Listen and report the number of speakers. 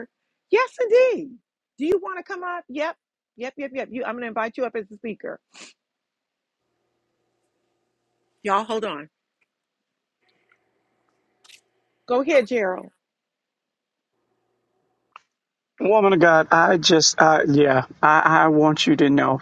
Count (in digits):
2